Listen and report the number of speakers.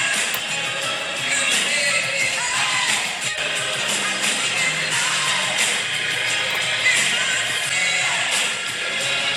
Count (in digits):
0